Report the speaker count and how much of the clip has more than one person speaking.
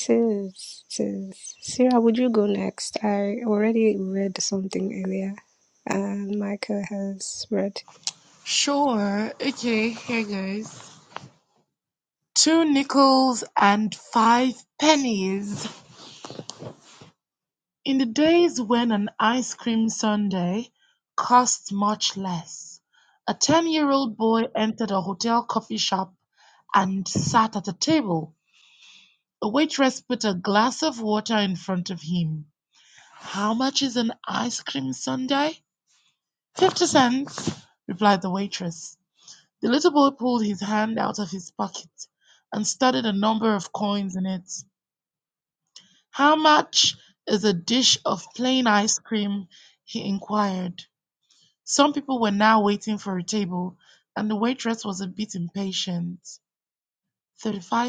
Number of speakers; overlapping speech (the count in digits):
2, no overlap